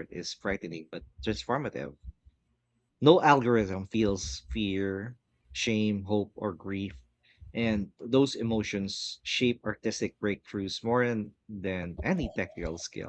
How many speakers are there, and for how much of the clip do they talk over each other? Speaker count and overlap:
1, no overlap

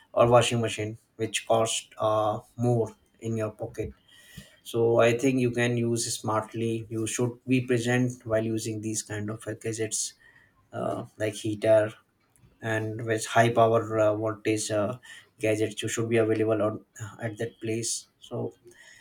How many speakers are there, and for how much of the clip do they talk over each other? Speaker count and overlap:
1, no overlap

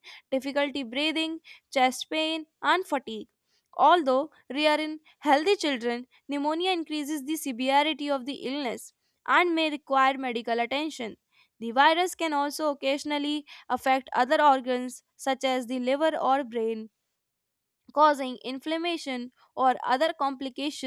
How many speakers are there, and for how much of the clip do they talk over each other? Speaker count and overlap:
1, no overlap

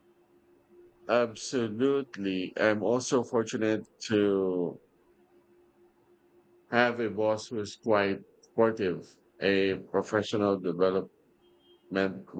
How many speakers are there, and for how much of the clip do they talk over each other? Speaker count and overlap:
1, no overlap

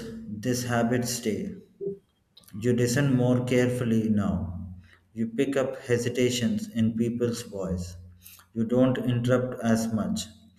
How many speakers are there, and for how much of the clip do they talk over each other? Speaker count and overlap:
1, no overlap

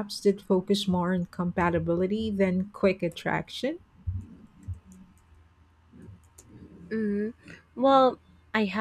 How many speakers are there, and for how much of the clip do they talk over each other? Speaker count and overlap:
2, no overlap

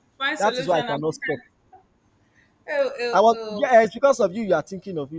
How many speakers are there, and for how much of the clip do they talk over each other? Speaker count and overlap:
2, about 30%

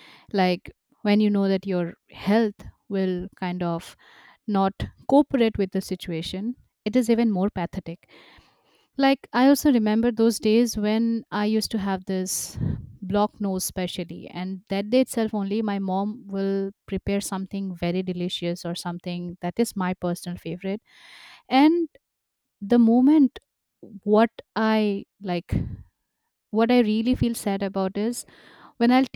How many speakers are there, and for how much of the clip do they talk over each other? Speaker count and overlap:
1, no overlap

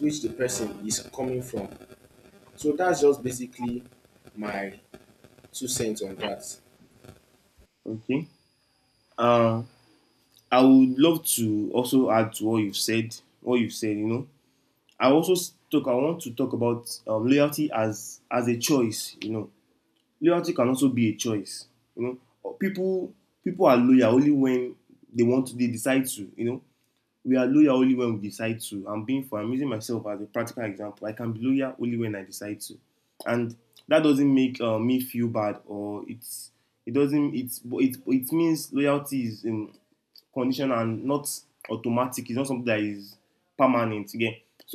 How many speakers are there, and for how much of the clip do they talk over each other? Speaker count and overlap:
2, no overlap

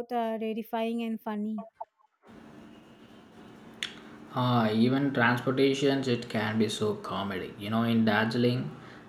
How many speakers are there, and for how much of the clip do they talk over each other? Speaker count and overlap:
2, no overlap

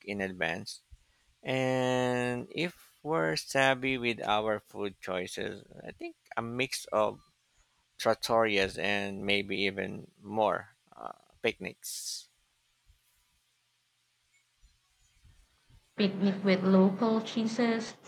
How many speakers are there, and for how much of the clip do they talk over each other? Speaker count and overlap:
2, no overlap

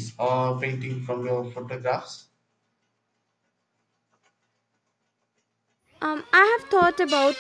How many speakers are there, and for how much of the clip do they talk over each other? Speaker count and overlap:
2, no overlap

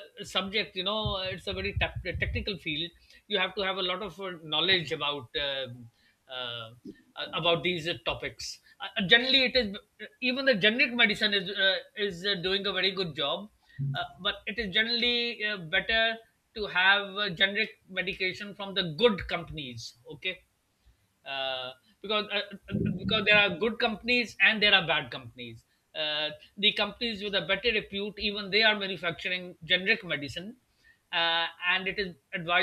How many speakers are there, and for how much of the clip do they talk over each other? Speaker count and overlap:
1, no overlap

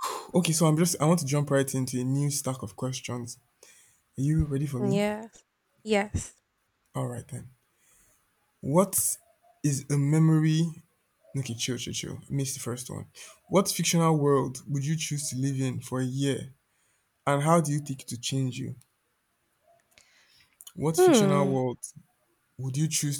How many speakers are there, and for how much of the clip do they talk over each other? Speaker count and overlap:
2, about 3%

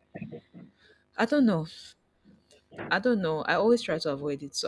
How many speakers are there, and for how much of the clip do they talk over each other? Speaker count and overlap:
1, no overlap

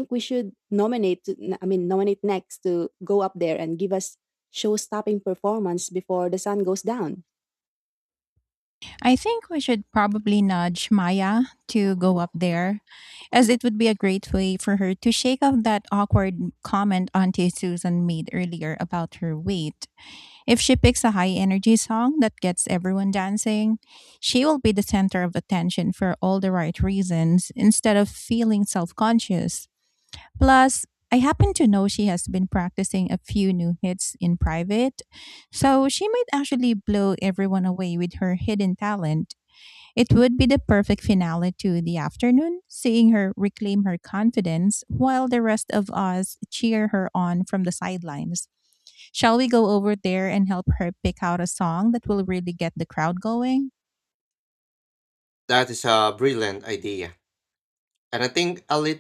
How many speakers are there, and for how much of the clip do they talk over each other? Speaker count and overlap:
3, no overlap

